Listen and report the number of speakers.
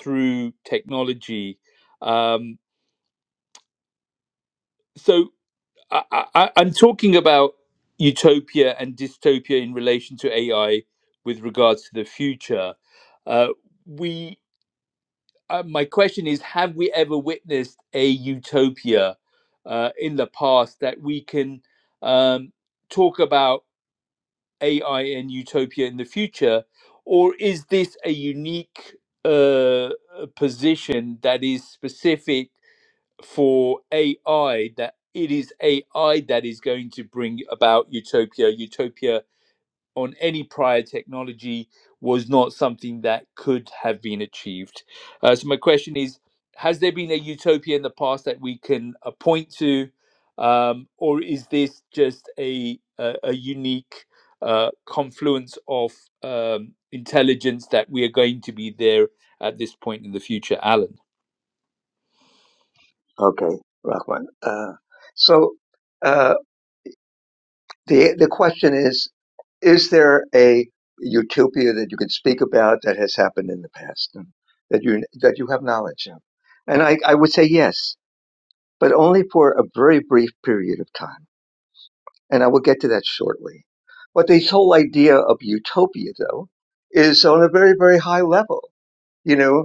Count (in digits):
2